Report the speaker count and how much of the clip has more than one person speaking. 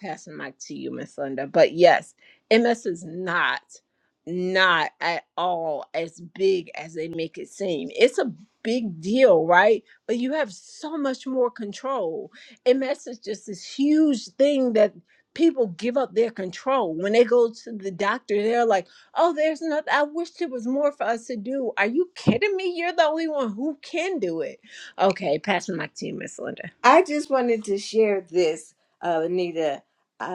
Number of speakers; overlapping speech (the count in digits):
2, no overlap